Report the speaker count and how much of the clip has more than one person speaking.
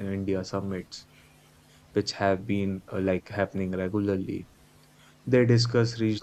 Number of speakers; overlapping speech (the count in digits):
1, no overlap